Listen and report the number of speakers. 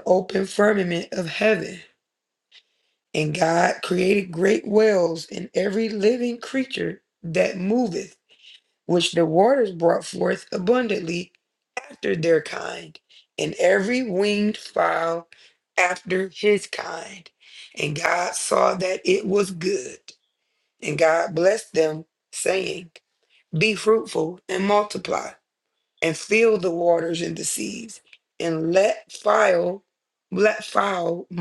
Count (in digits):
1